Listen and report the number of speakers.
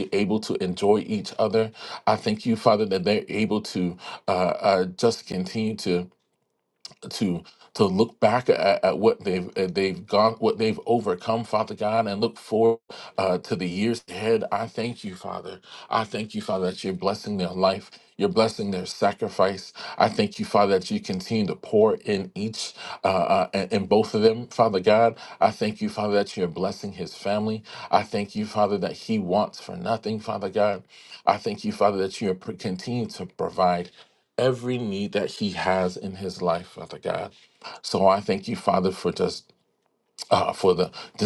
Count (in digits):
1